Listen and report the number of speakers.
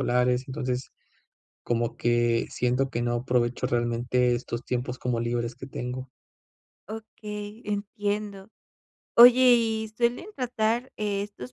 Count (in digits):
2